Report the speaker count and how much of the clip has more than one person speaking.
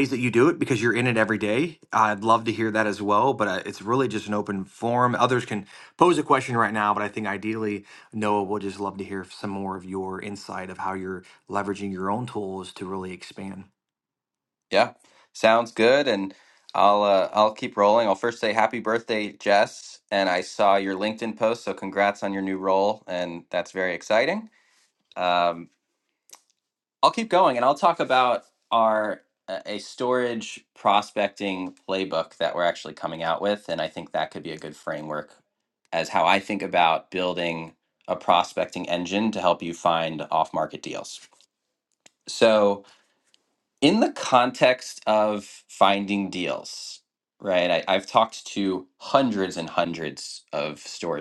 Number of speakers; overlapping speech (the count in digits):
2, no overlap